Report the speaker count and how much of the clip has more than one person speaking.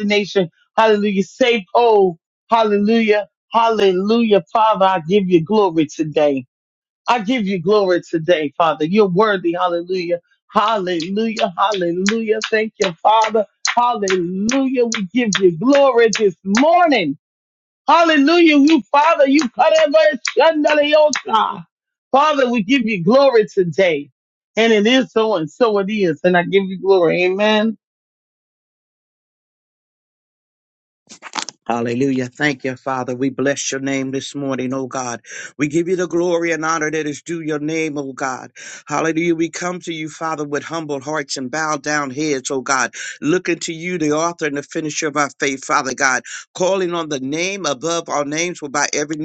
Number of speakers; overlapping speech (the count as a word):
two, no overlap